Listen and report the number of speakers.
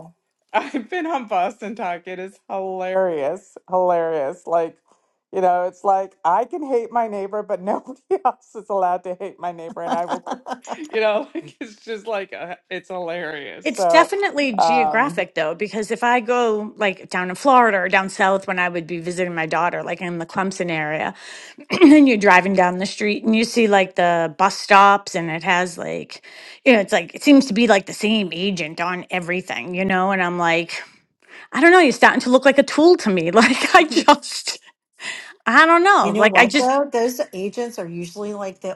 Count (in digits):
3